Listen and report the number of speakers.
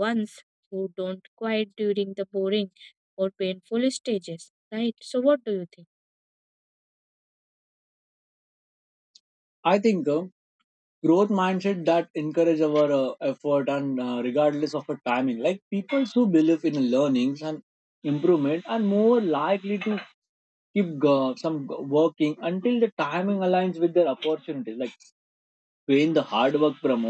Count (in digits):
2